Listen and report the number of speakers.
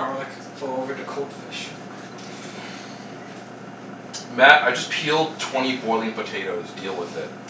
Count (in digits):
2